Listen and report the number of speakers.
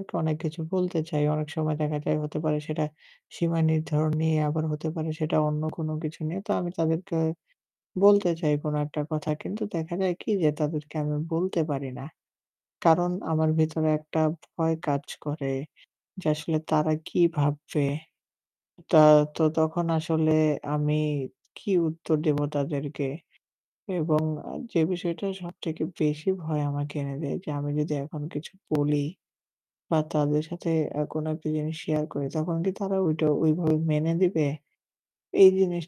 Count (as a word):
one